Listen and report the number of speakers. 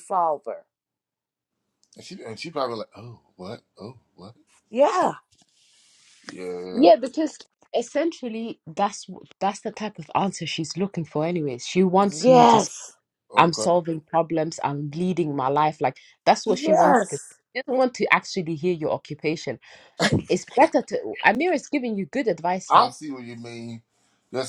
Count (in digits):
3